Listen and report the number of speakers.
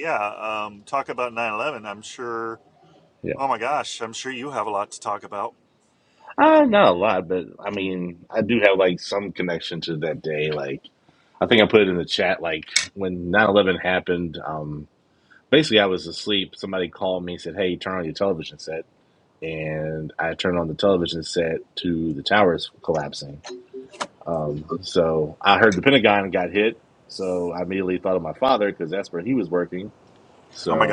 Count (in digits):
2